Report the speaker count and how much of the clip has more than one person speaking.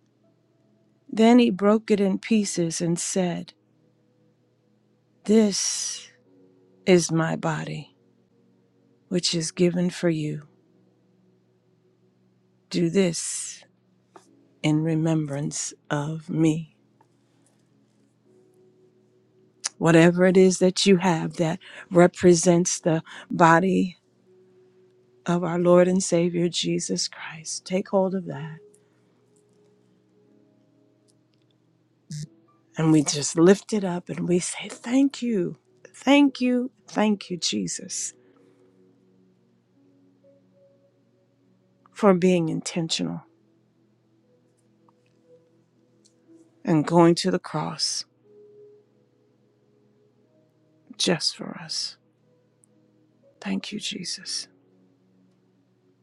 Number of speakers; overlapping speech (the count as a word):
one, no overlap